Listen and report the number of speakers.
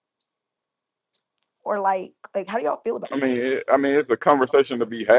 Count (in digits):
2